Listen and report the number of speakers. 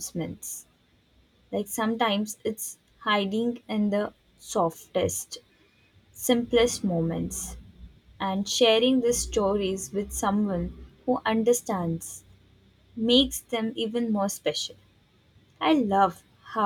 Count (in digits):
1